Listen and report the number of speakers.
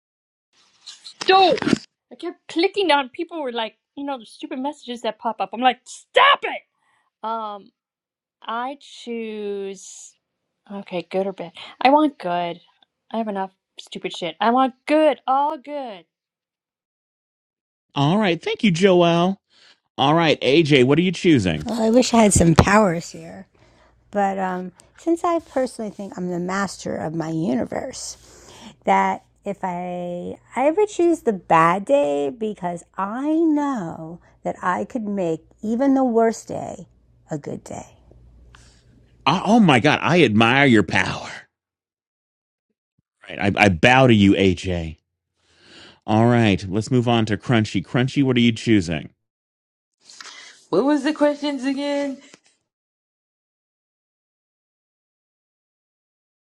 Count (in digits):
4